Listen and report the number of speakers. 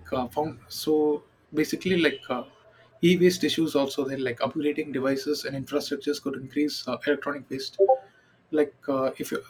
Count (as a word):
one